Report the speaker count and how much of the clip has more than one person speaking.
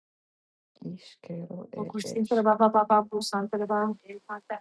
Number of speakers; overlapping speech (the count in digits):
2, about 18%